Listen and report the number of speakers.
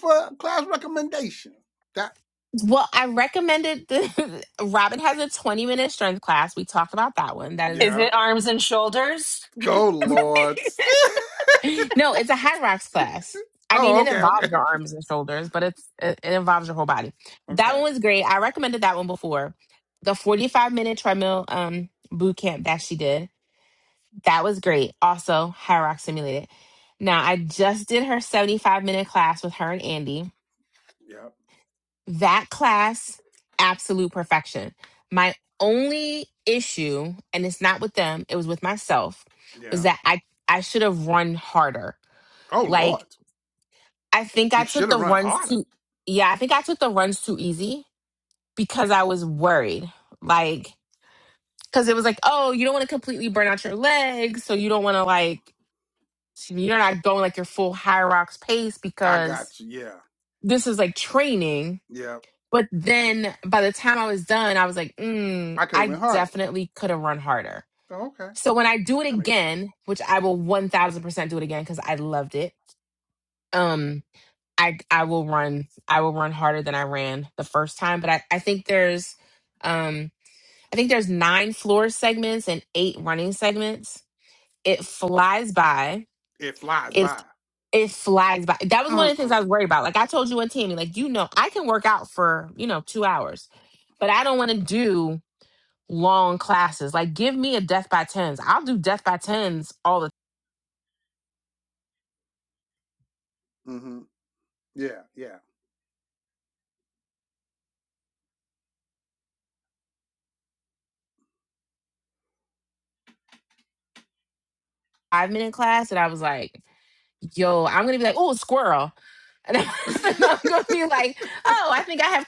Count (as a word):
three